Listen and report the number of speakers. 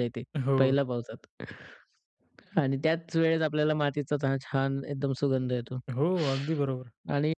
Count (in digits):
2